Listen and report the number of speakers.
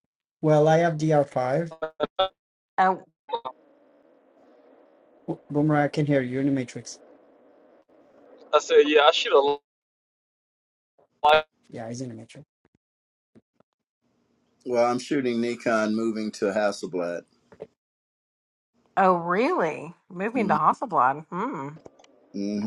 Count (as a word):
four